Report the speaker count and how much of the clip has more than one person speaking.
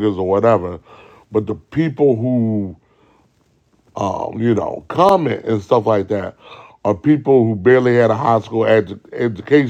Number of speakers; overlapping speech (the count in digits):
1, no overlap